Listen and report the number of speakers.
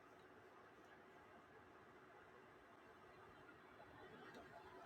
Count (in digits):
0